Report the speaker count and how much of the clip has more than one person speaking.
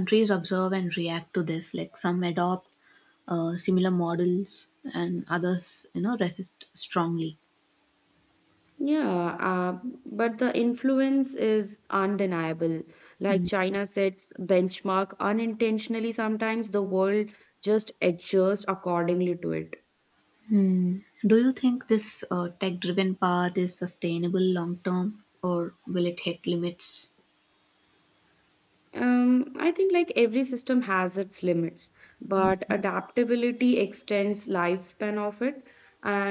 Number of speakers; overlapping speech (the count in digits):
2, no overlap